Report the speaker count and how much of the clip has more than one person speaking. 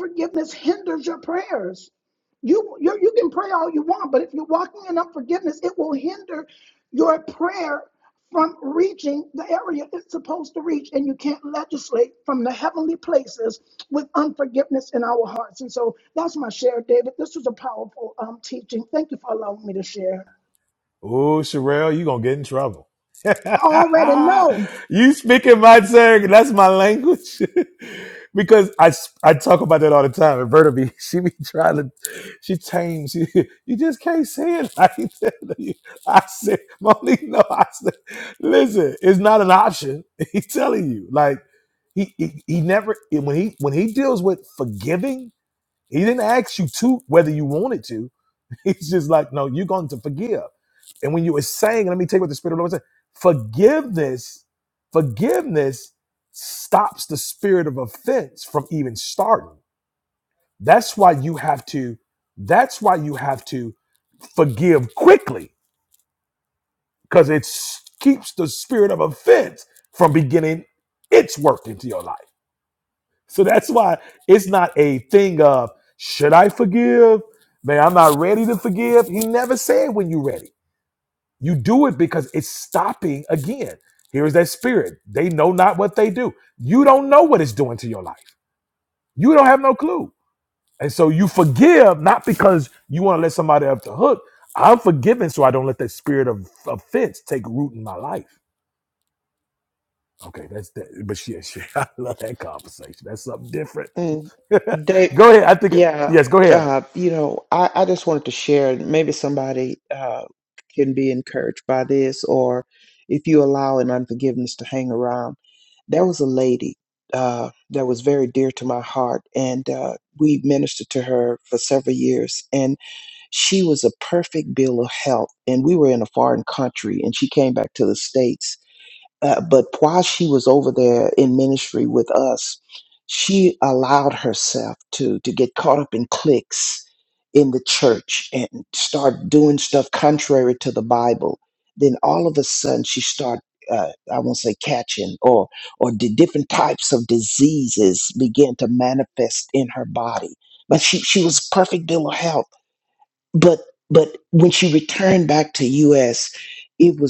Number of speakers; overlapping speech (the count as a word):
three, about 1%